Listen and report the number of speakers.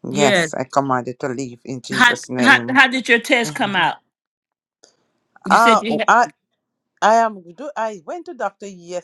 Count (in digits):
2